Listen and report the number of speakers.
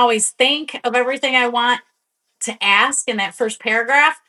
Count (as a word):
one